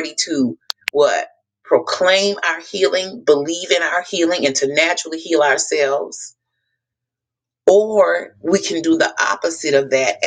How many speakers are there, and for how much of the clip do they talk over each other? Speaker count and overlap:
1, no overlap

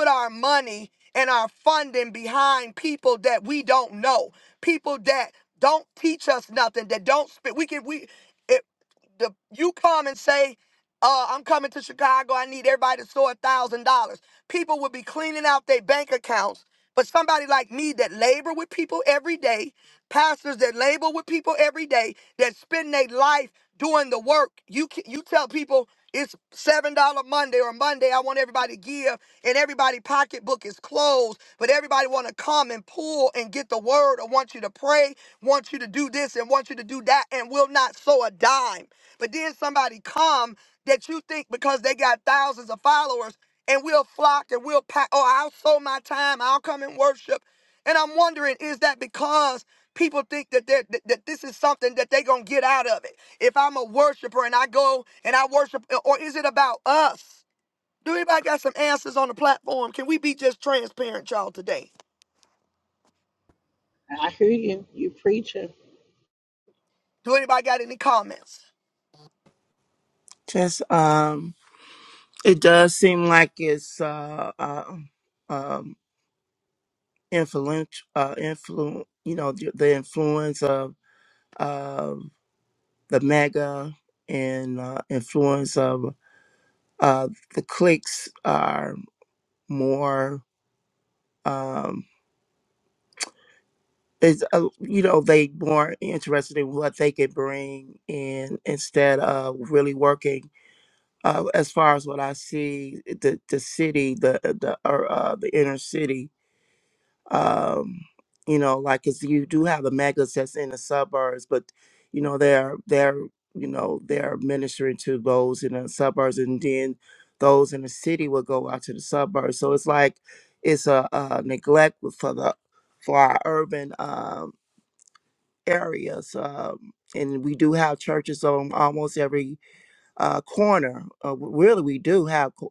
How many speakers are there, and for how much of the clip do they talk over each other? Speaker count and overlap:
3, no overlap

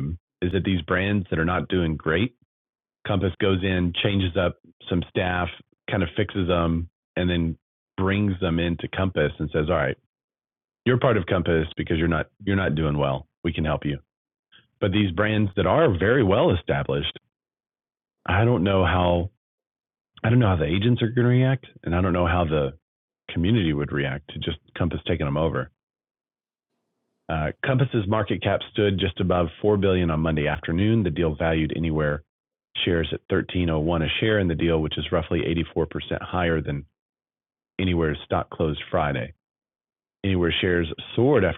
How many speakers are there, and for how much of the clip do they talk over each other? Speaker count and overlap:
1, no overlap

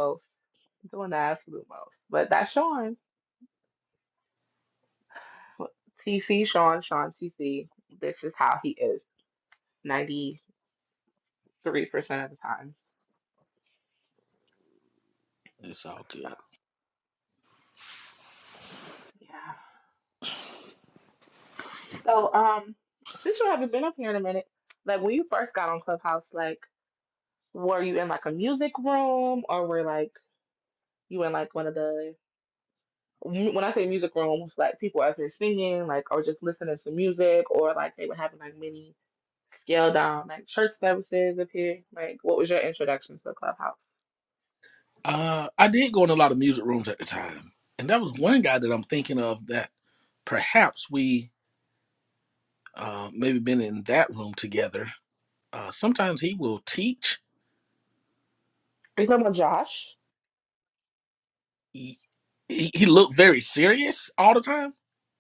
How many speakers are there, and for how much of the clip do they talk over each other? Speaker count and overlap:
2, under 1%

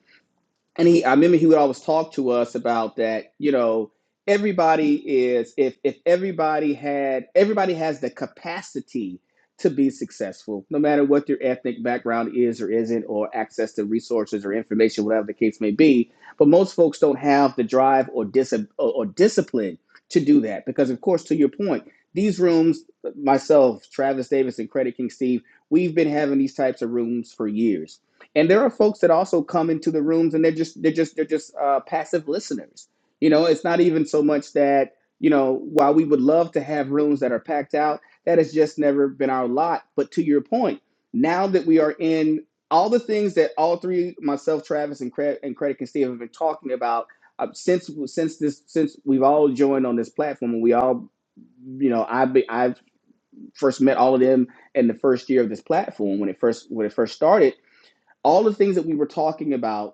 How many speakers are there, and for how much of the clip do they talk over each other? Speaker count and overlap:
1, no overlap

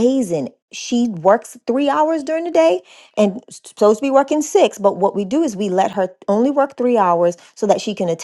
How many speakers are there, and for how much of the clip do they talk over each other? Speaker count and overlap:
1, no overlap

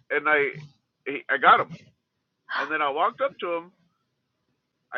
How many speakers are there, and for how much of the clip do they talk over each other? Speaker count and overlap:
1, no overlap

